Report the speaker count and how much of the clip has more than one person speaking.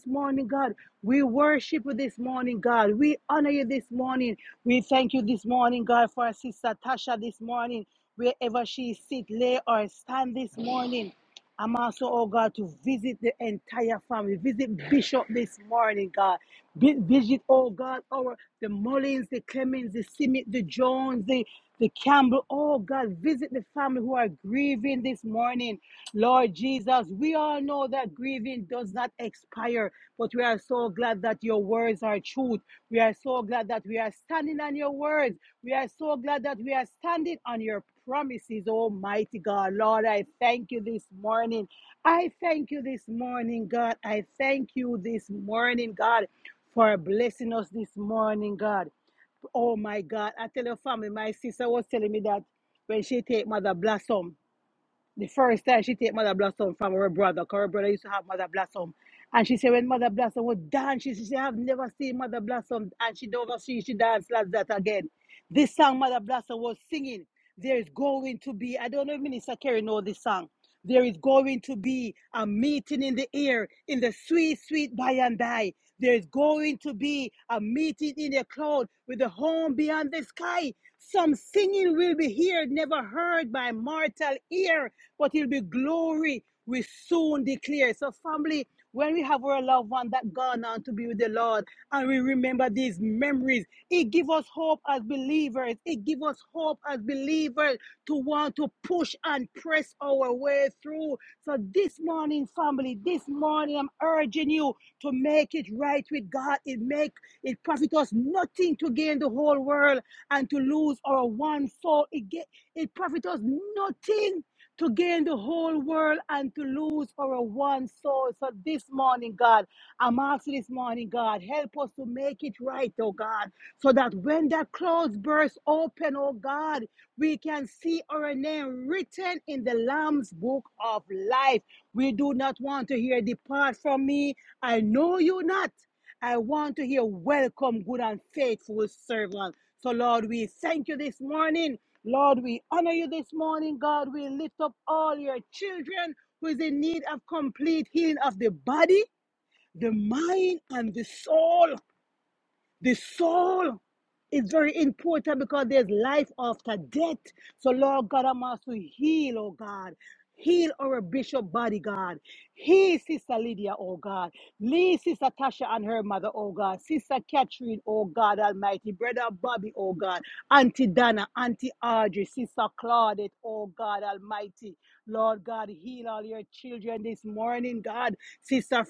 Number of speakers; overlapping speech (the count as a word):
one, no overlap